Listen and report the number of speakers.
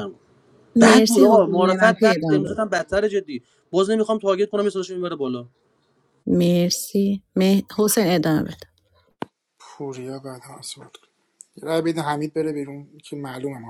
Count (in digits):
3